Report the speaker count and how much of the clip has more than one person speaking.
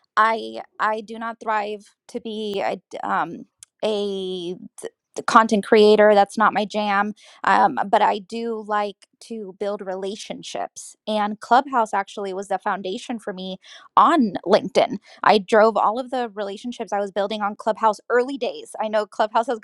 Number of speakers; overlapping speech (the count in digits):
1, no overlap